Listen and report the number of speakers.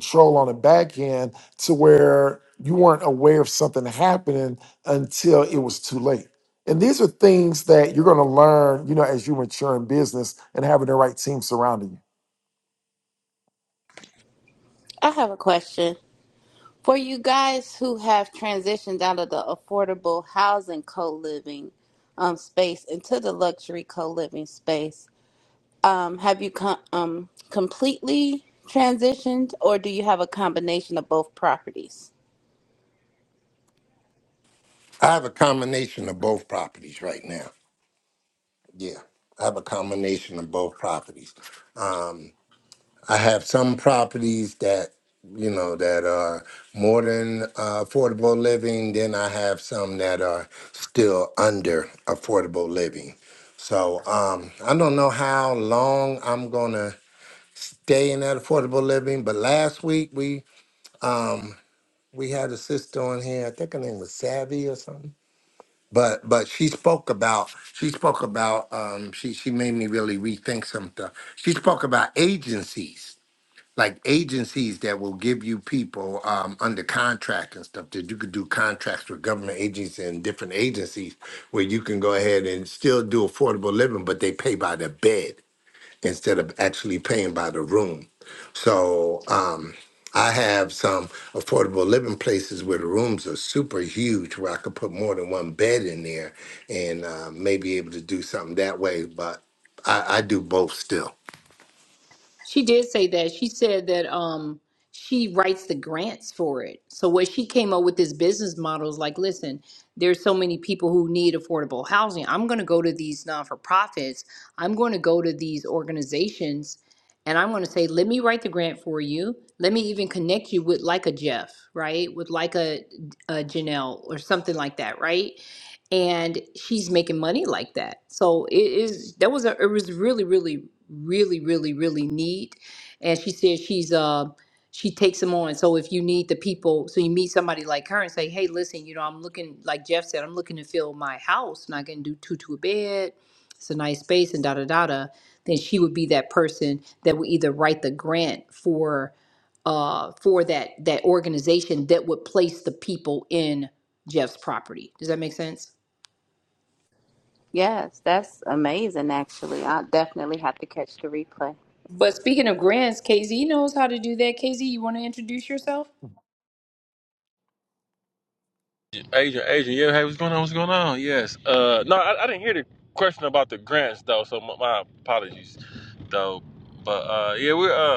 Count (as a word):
five